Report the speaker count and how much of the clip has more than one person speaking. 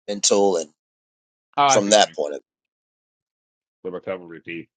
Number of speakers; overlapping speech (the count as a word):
two, about 9%